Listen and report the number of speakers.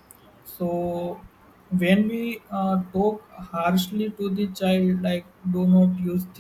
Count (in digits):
1